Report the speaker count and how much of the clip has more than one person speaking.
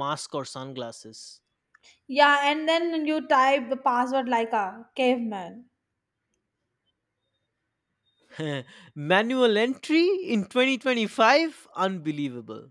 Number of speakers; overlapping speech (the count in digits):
2, no overlap